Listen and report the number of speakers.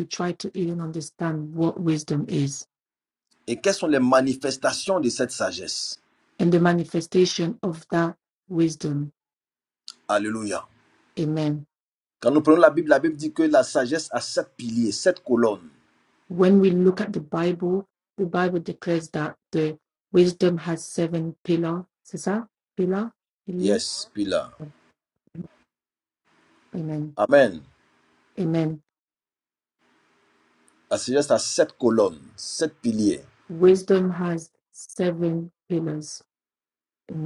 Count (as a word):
two